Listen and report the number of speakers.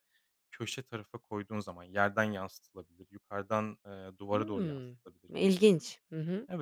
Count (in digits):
2